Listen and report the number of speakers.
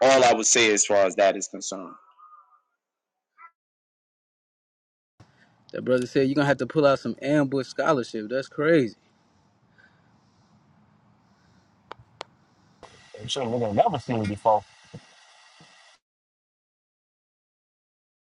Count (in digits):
3